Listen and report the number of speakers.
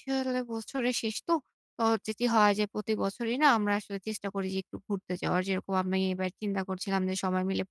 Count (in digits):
1